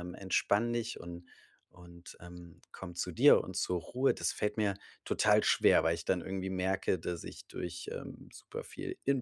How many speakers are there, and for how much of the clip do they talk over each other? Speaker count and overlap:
1, no overlap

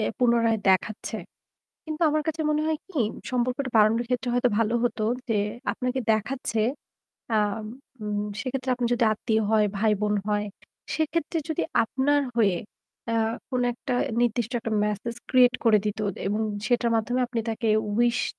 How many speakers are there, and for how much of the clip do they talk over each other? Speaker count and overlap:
1, no overlap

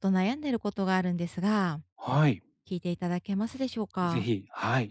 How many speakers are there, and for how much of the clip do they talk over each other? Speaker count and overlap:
2, about 4%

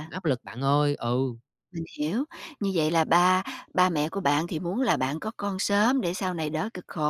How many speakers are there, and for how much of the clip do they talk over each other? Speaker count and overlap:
2, about 1%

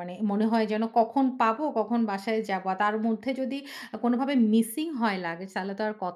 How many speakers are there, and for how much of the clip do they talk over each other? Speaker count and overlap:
1, no overlap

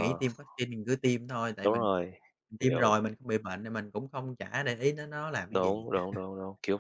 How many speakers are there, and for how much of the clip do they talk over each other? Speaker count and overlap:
2, about 11%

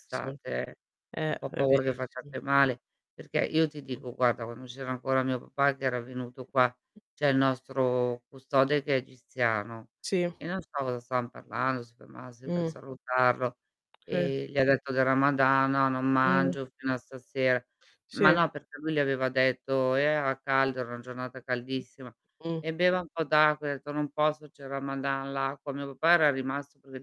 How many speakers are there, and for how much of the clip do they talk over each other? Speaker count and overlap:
2, about 7%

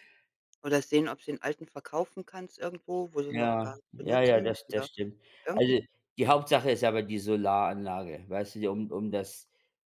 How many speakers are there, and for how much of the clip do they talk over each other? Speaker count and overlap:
2, about 18%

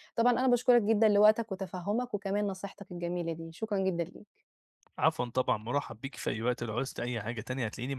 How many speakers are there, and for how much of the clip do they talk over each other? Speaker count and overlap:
2, no overlap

